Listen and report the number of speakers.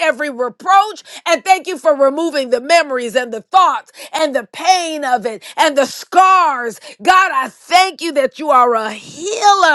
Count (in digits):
1